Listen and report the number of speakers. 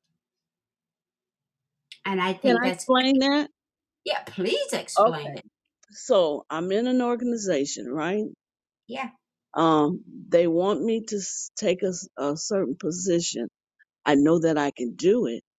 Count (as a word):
two